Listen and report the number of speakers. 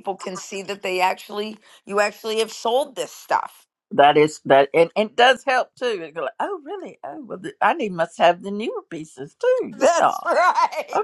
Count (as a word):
two